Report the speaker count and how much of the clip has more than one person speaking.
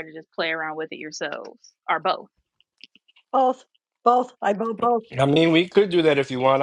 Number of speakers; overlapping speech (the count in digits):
3, no overlap